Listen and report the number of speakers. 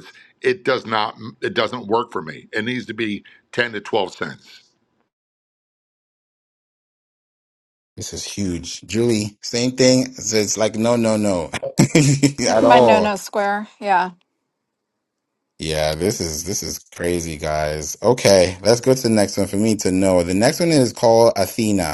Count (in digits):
3